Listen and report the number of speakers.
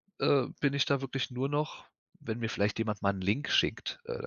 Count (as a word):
one